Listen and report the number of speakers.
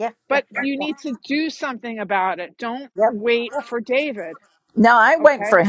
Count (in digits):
2